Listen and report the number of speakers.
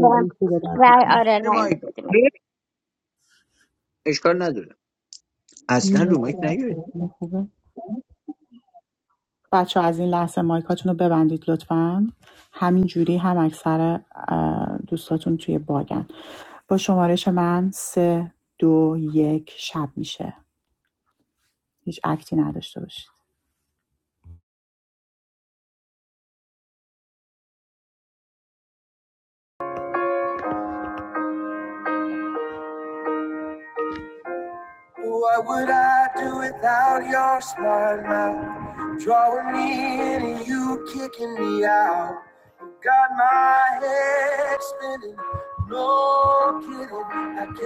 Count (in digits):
4